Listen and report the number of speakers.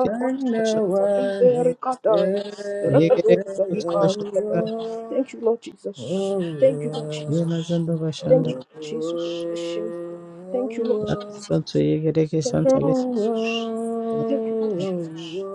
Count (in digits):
3